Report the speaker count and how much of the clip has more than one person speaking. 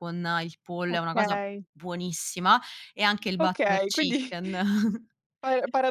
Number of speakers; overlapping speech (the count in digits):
2, about 24%